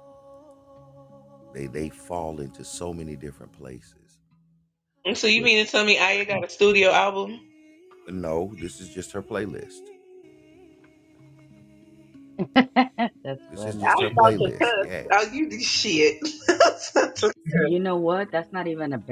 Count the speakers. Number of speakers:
3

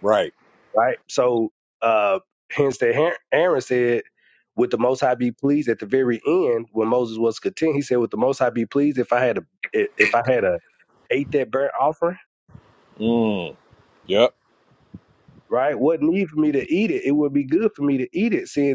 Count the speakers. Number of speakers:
2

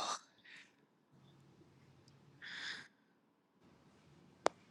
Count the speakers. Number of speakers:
0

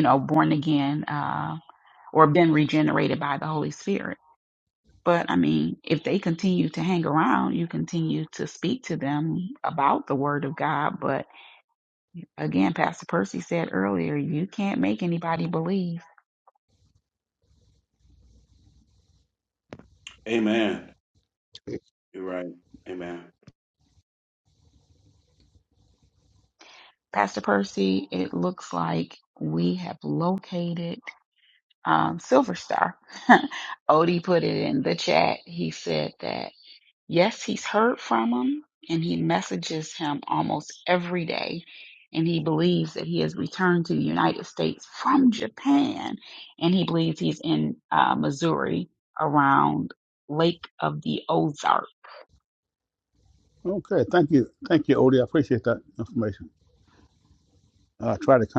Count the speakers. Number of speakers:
3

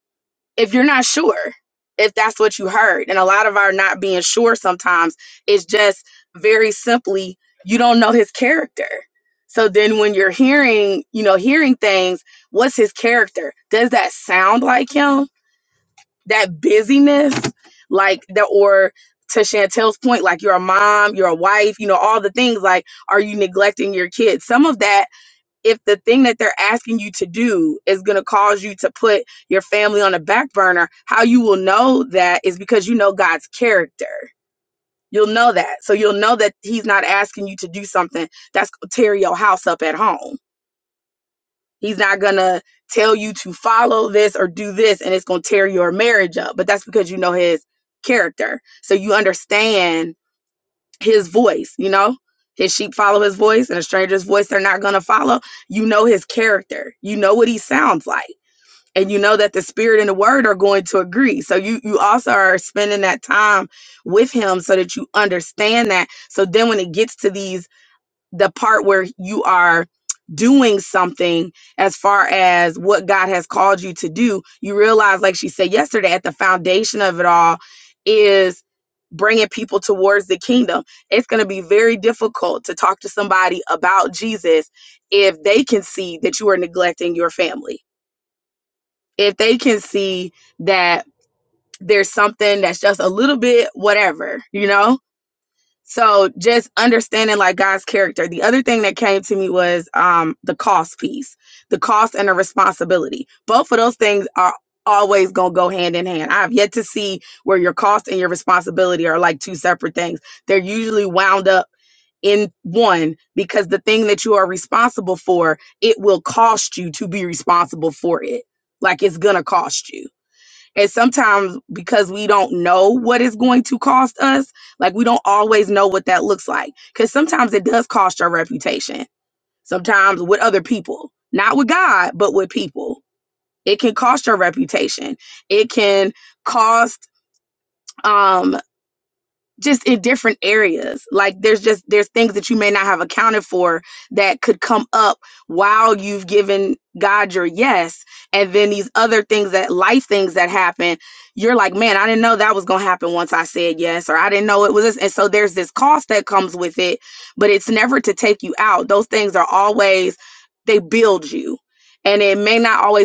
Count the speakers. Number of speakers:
1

